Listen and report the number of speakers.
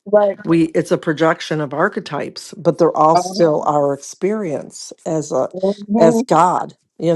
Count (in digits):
2